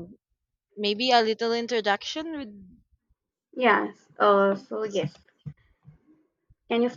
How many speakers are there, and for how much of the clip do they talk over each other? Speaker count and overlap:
2, no overlap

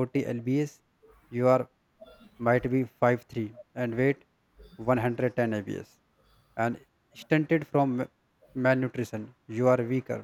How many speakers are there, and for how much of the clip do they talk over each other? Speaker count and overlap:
1, no overlap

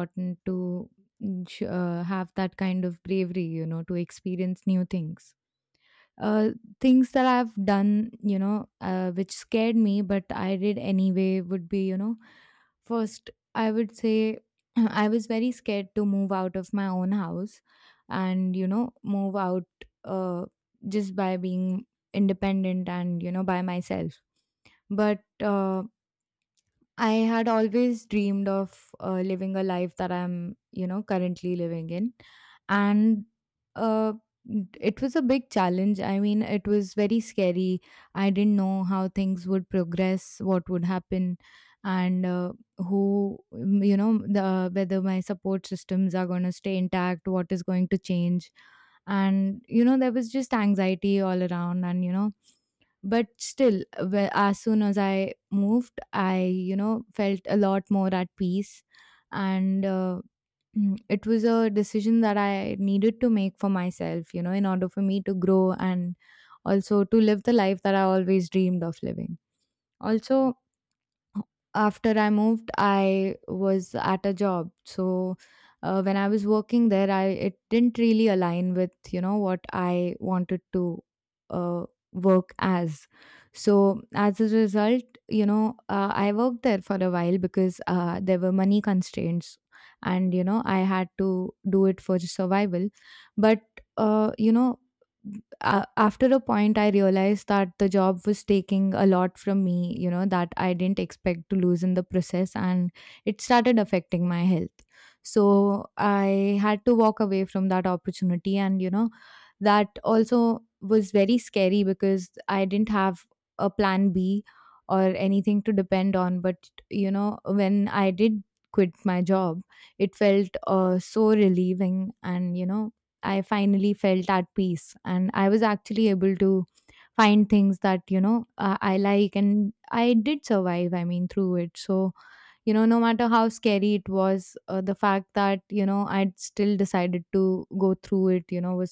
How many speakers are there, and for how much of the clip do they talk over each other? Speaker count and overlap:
1, no overlap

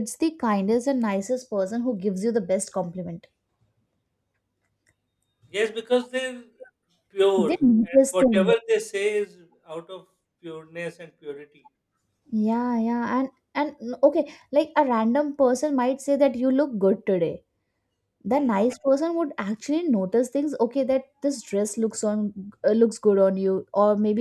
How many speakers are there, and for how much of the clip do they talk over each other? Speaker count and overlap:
2, about 6%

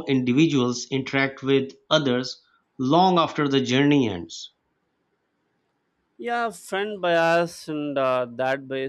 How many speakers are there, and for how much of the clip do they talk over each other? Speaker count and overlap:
2, no overlap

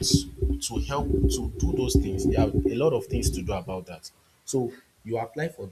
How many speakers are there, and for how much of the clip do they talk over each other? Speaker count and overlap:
1, no overlap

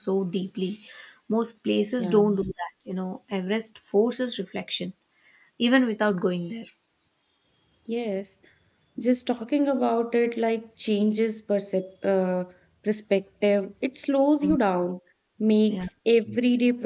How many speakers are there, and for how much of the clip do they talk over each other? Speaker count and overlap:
2, about 3%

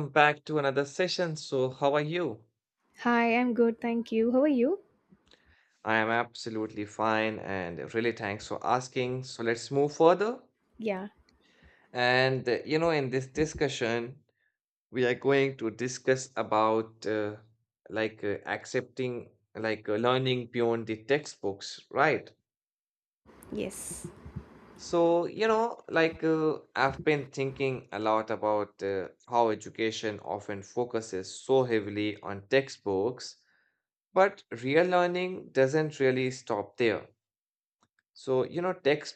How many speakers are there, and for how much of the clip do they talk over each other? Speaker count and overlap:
2, no overlap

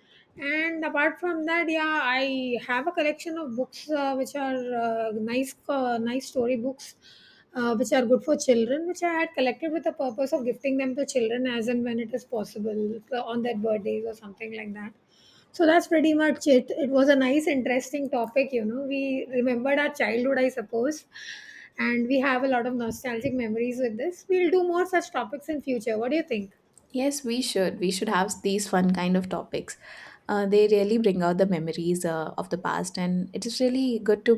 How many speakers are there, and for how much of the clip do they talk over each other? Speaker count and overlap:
2, no overlap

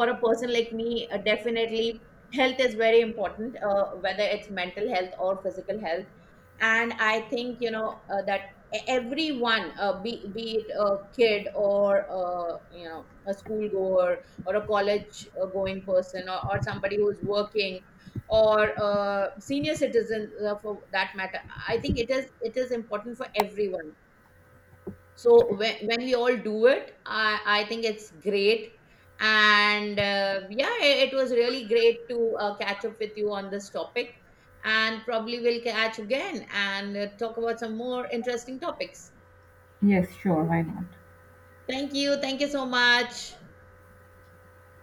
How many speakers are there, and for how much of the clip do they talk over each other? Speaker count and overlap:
2, no overlap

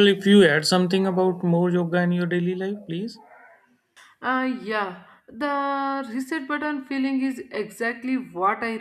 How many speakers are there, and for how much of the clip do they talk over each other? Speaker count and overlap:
2, no overlap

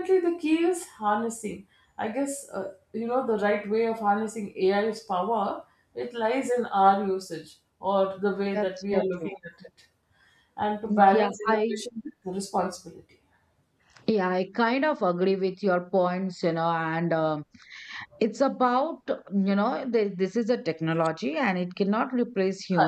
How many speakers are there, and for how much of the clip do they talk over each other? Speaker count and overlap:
2, about 8%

